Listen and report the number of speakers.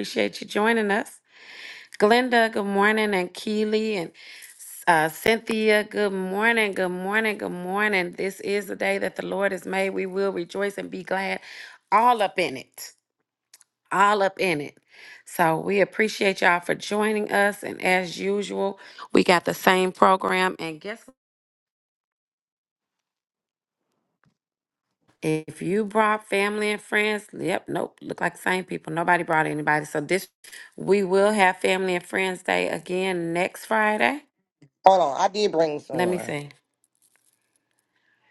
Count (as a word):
two